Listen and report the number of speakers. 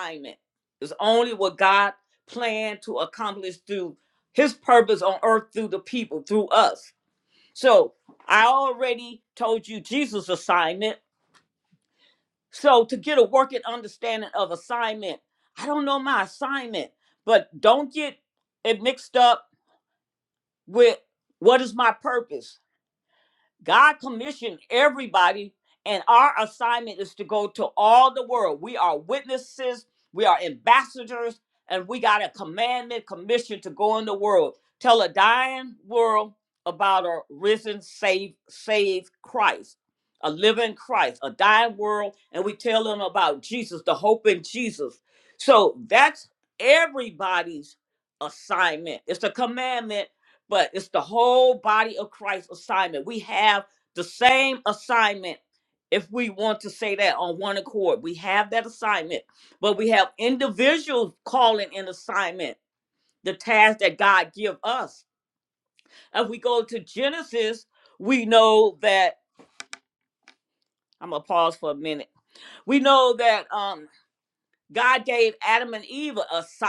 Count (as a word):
one